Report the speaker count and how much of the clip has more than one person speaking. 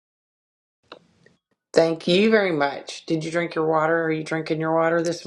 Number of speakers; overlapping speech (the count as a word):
one, no overlap